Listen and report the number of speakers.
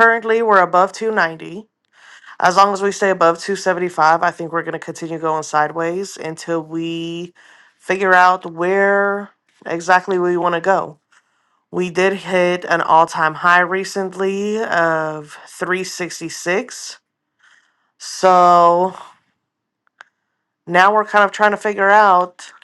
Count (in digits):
1